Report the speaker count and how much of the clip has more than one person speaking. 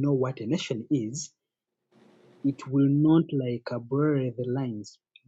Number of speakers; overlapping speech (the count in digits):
1, no overlap